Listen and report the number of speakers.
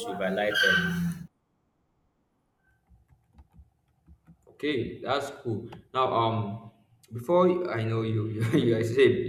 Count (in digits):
2